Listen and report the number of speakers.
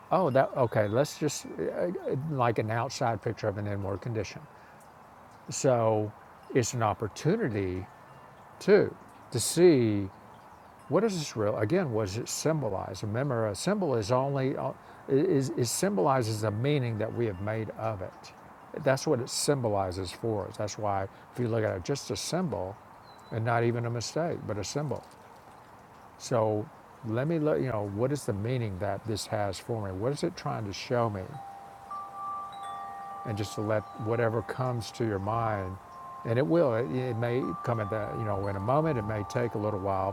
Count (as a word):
one